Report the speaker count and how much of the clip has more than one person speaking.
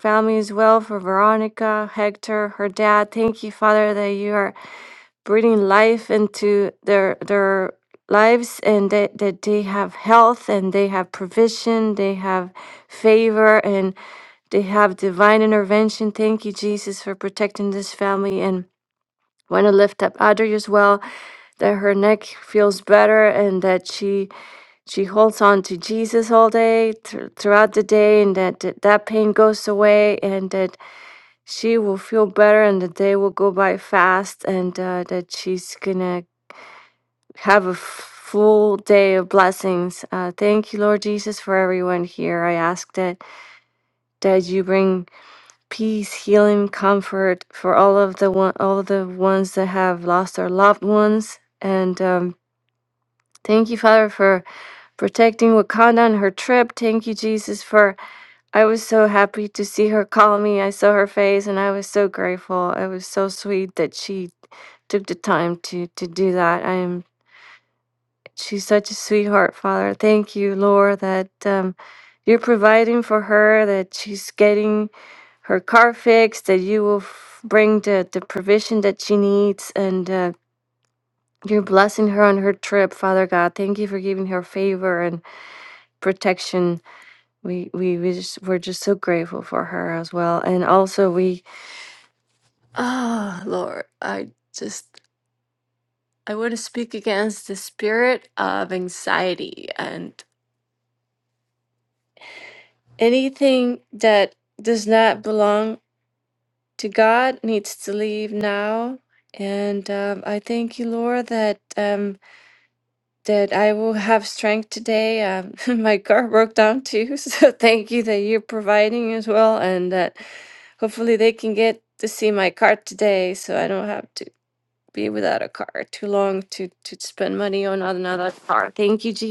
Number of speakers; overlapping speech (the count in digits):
1, no overlap